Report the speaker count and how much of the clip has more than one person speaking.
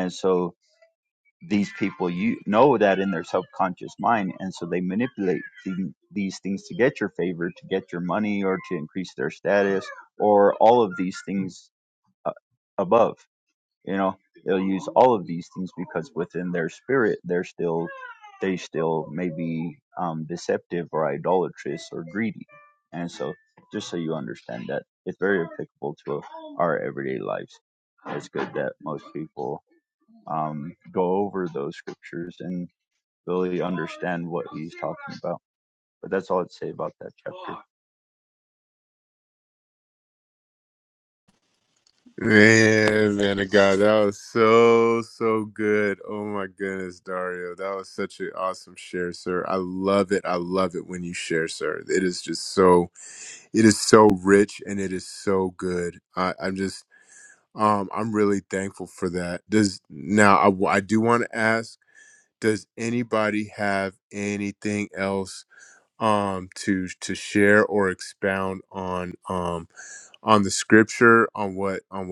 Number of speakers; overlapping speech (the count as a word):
two, no overlap